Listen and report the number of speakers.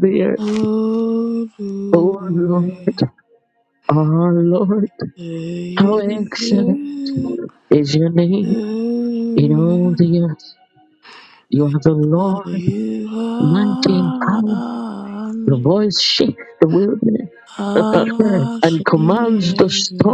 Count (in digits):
2